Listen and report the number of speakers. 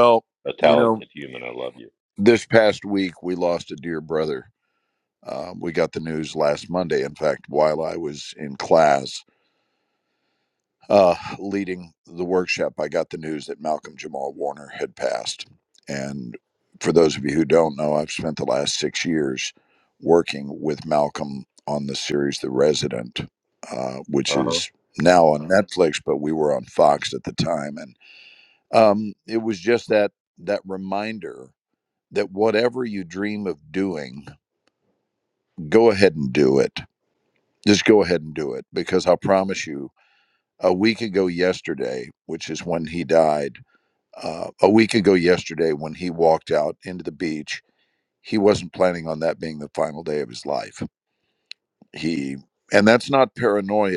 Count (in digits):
2